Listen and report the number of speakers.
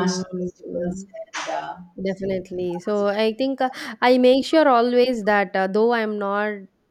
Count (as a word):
two